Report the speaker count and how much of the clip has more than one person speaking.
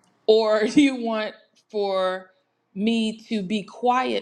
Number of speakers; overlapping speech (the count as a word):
one, no overlap